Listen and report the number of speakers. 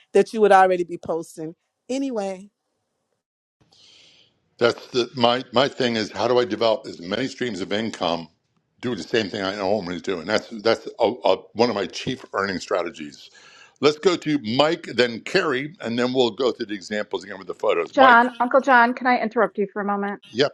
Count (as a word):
three